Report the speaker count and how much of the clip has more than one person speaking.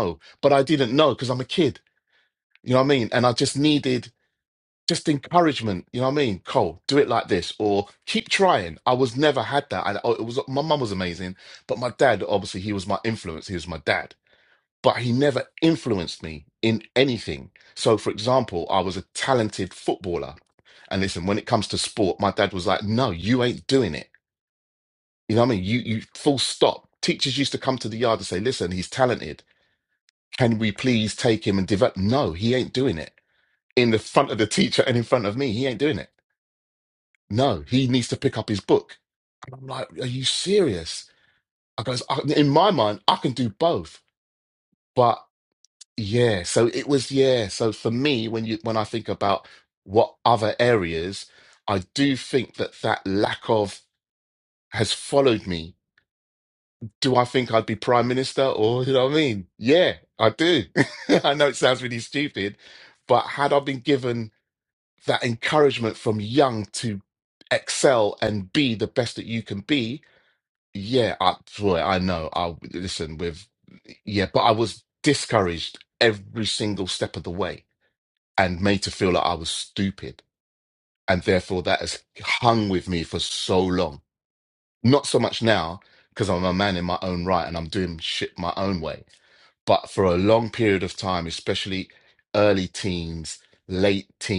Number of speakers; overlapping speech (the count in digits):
1, no overlap